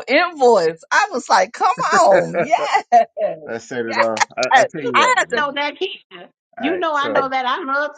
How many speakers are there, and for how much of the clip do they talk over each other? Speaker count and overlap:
three, about 17%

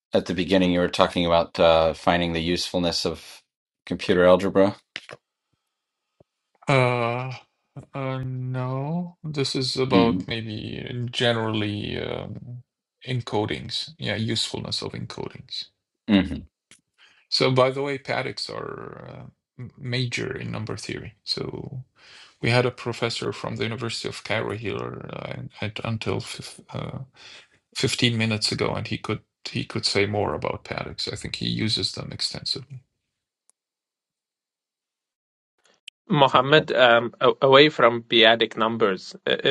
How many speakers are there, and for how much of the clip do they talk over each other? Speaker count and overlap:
three, about 1%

